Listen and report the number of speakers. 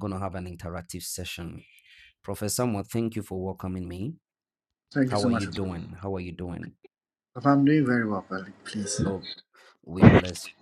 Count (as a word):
two